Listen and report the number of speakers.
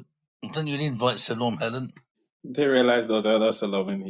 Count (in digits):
2